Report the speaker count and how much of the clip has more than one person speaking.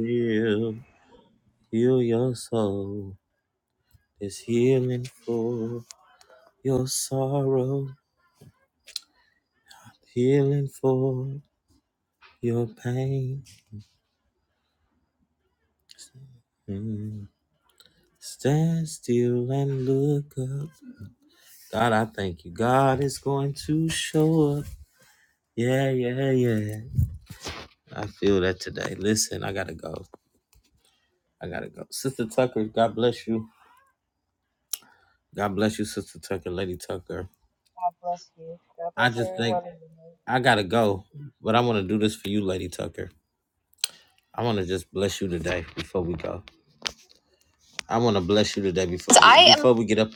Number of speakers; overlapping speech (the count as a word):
two, about 1%